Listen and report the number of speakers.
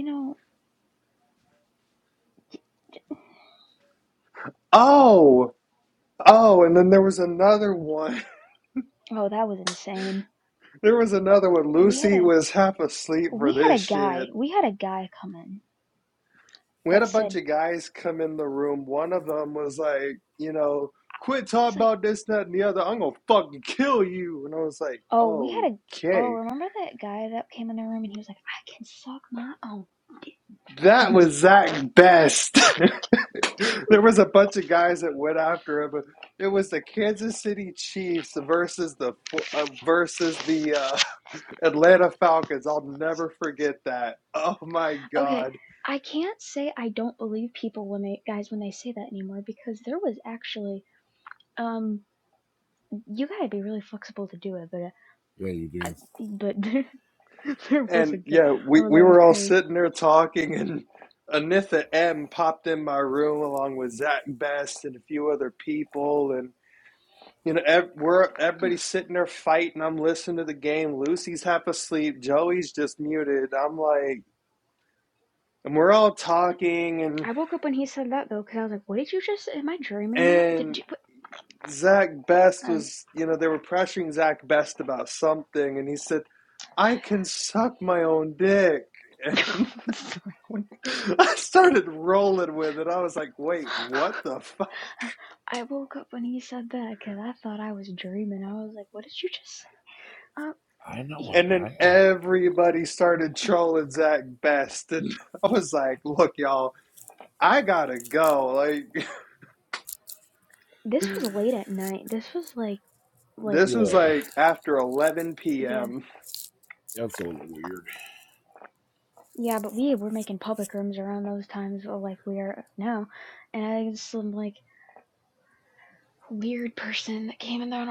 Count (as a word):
three